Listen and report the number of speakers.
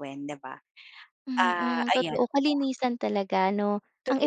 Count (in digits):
2